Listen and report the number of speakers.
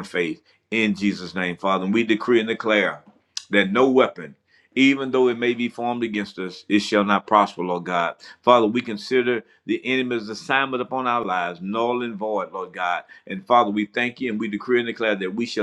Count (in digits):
1